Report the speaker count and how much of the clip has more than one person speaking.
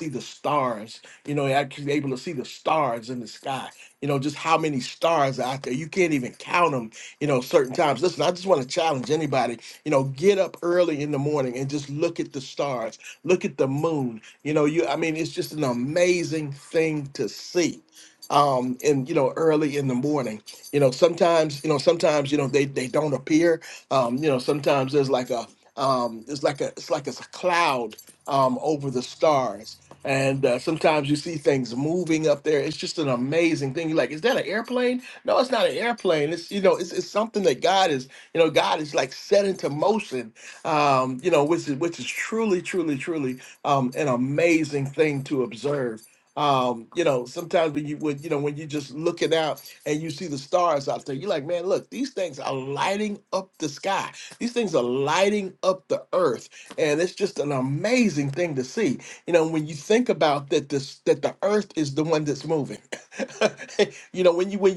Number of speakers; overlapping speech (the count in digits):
1, no overlap